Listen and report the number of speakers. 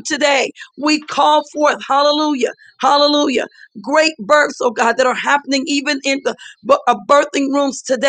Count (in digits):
1